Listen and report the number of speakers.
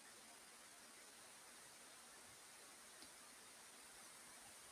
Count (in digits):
0